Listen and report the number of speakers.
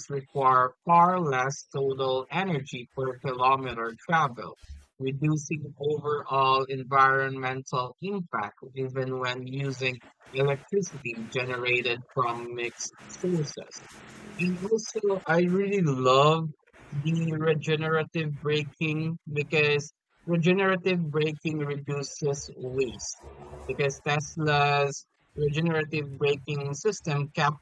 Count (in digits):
1